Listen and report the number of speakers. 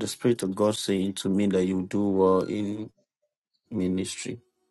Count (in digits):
1